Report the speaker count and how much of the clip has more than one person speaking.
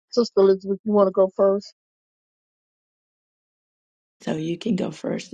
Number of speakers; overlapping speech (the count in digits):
2, no overlap